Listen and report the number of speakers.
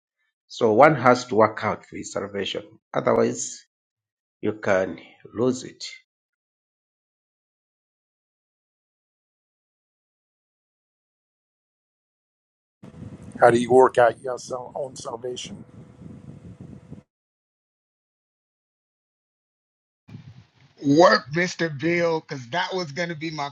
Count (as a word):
three